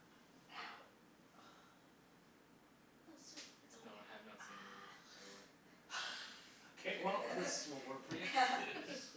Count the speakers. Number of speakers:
three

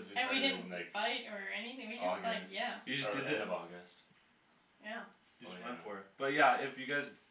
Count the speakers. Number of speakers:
three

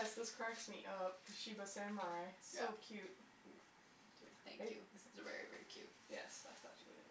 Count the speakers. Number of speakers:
two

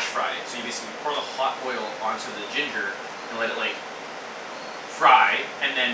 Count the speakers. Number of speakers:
one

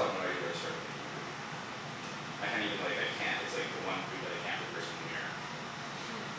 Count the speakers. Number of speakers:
one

